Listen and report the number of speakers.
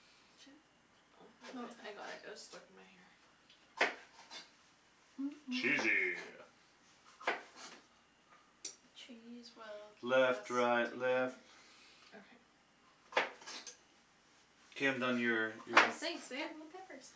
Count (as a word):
three